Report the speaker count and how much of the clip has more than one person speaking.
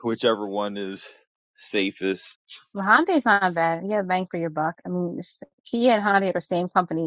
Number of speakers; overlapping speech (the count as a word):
two, no overlap